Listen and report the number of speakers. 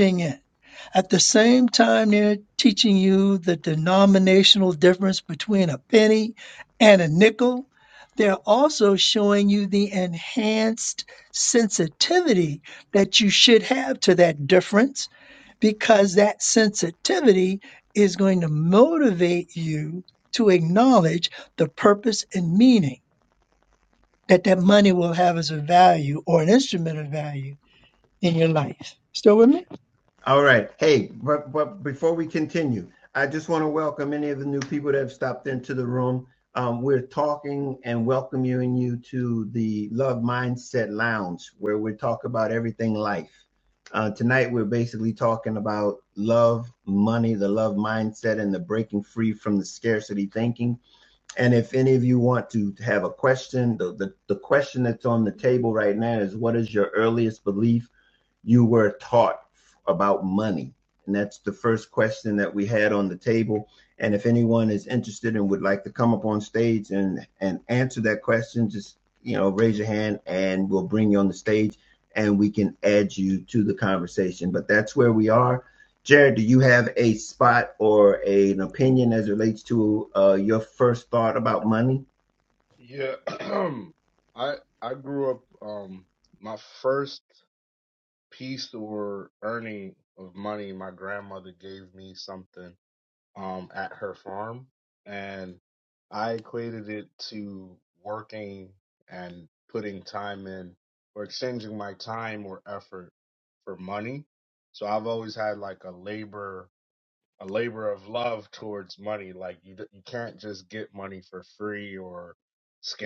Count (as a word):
three